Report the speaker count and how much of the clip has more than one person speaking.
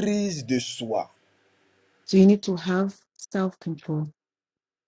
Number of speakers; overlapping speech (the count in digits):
2, no overlap